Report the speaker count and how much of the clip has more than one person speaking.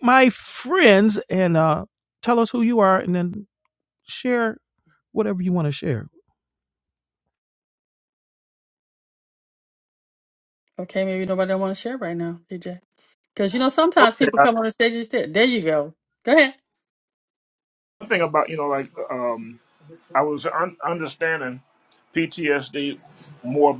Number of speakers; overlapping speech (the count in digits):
3, about 2%